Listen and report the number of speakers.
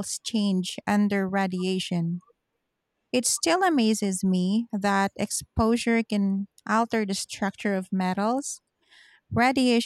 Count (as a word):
one